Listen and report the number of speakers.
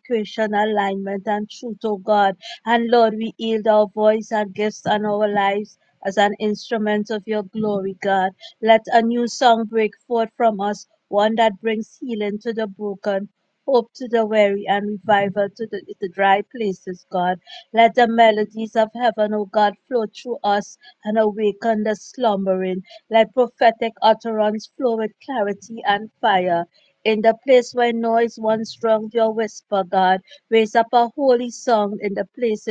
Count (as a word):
one